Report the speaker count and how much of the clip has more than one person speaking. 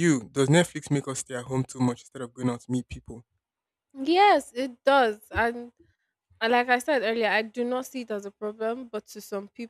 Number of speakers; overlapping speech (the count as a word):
two, no overlap